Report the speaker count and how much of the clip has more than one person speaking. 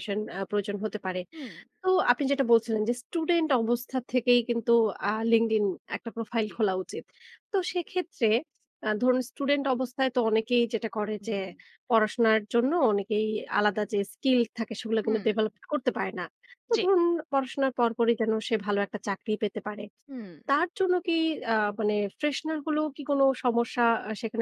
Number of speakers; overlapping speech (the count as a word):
two, about 3%